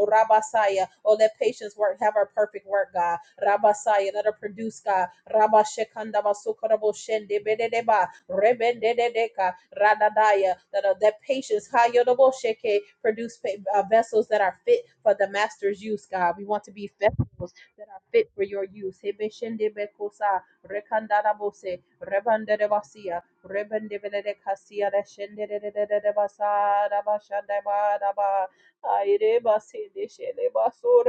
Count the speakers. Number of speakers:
one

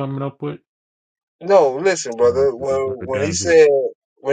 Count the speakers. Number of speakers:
two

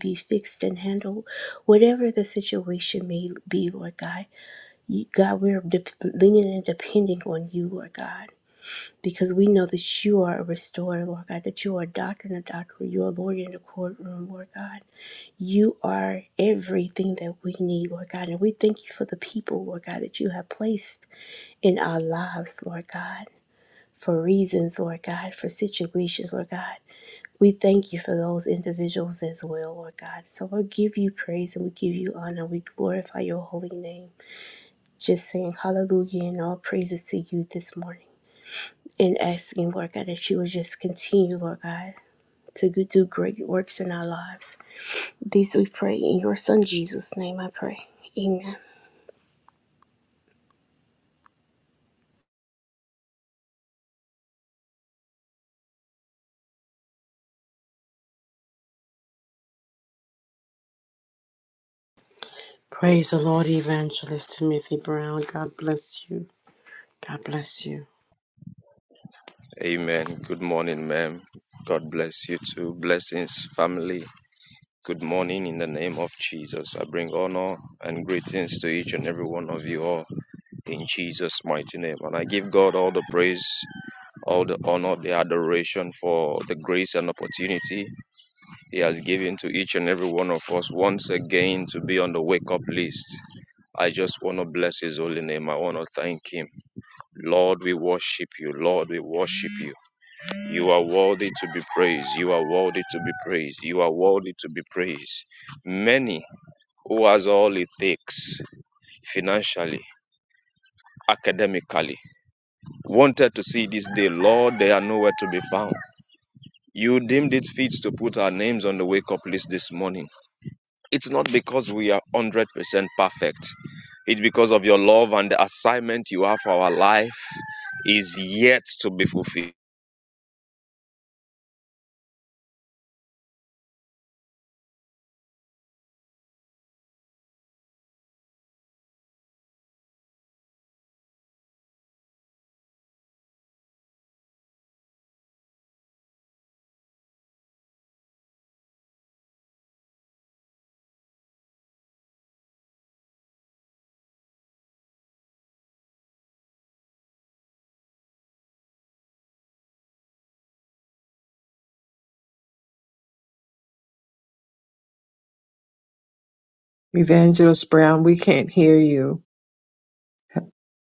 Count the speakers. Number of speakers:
four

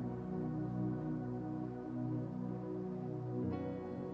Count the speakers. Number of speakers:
zero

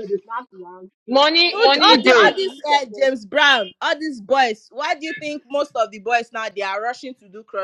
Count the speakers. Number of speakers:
three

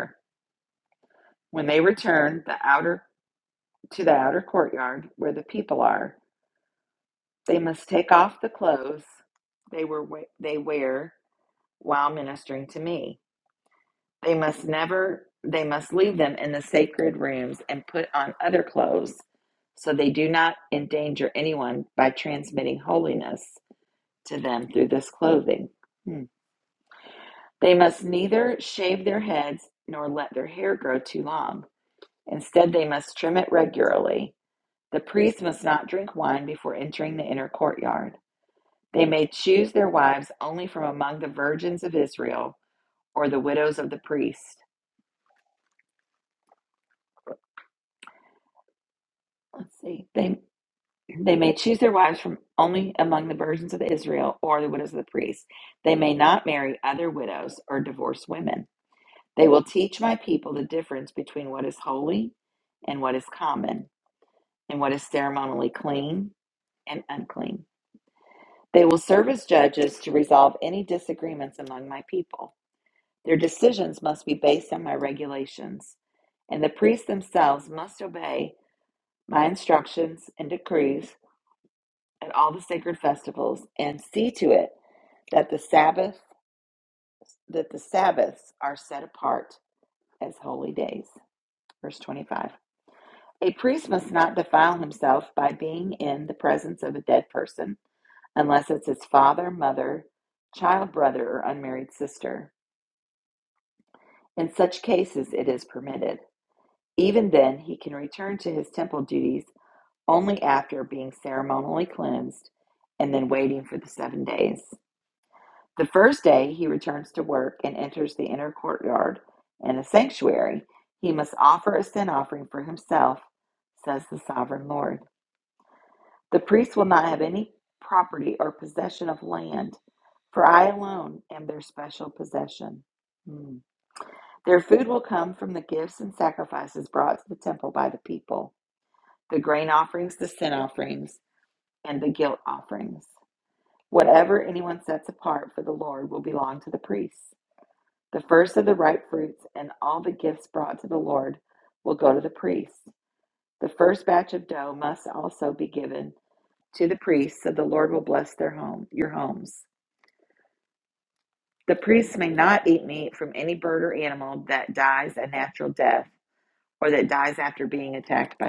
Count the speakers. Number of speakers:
one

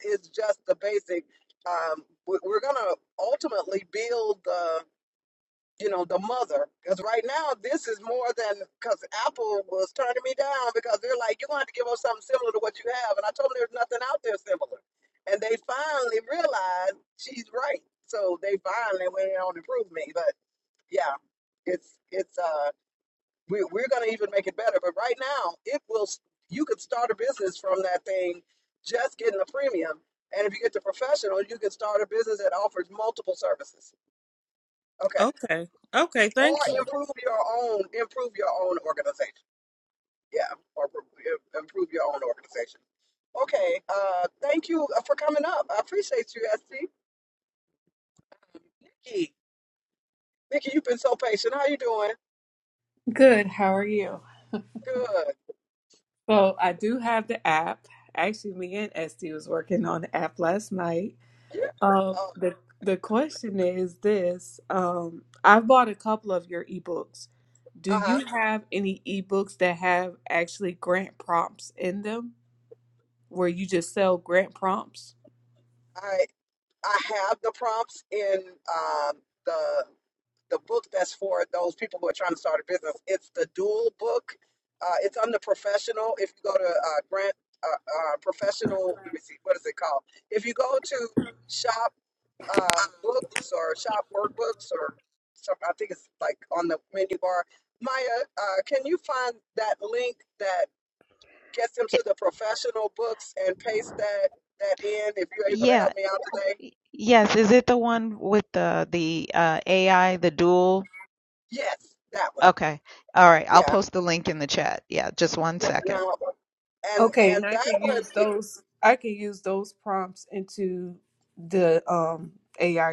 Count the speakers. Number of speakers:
four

